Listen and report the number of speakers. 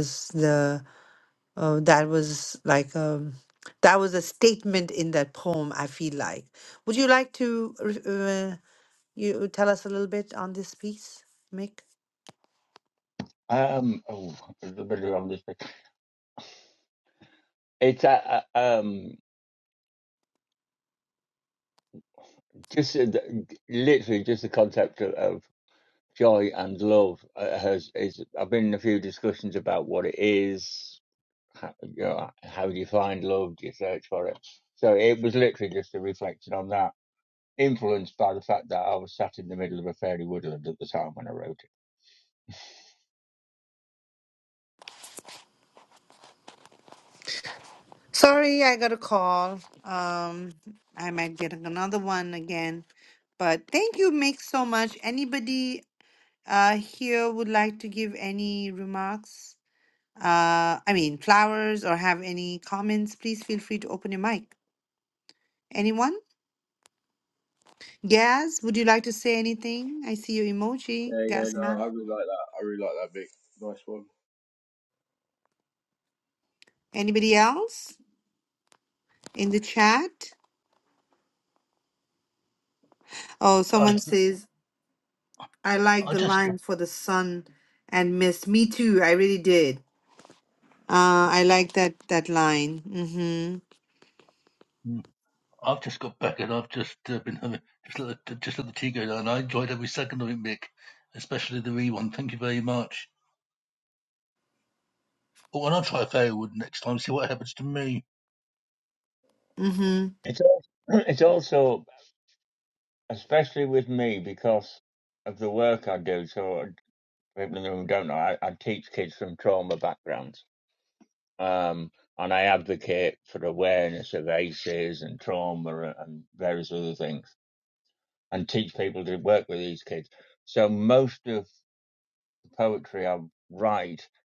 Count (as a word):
four